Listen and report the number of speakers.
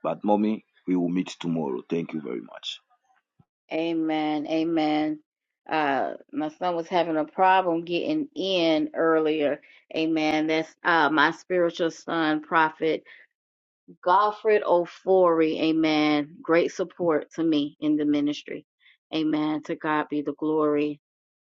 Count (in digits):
2